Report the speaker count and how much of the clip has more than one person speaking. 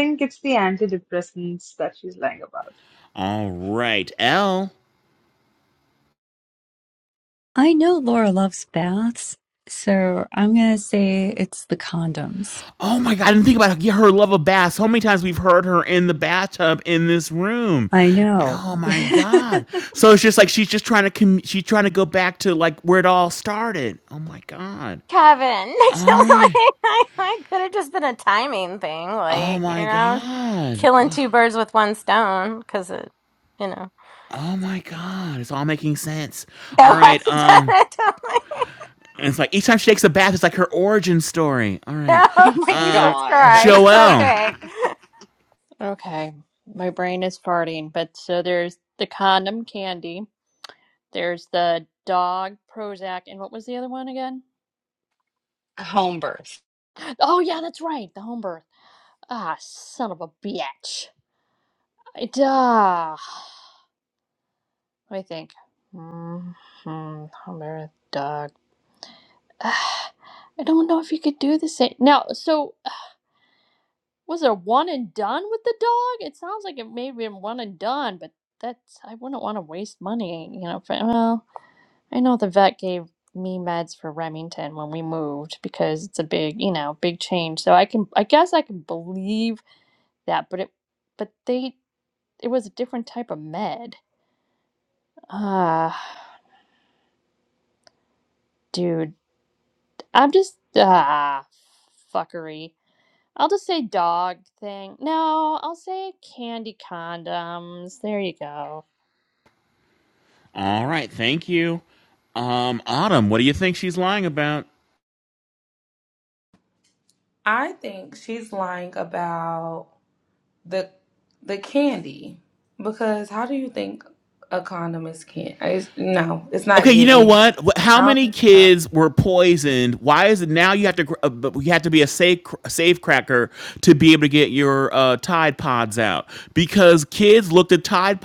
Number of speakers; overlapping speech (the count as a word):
seven, about 4%